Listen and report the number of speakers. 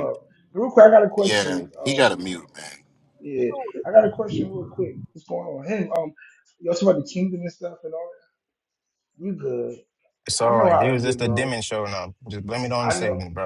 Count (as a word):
three